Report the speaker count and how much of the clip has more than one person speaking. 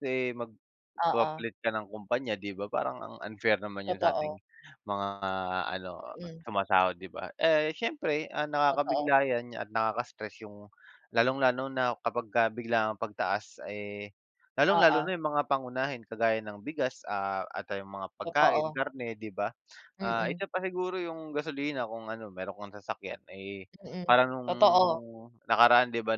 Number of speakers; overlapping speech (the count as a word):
two, about 9%